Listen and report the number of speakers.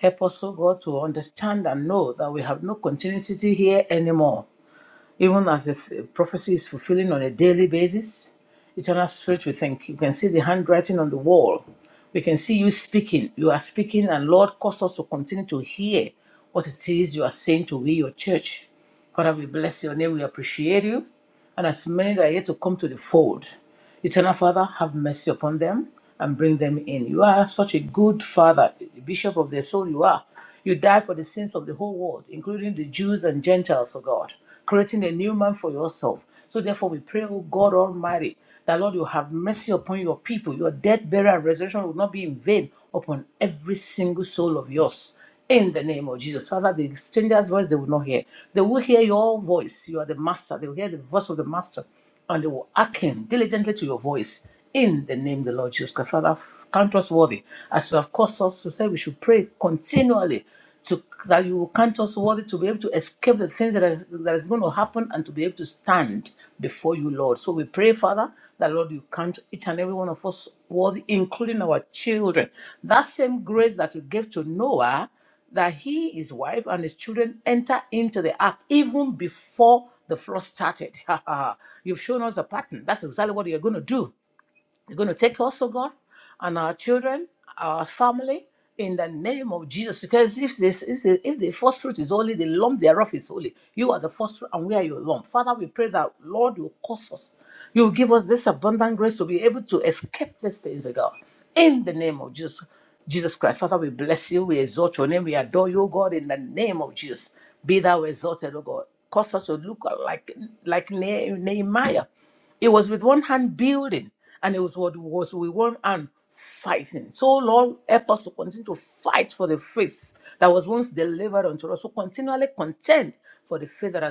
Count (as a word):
one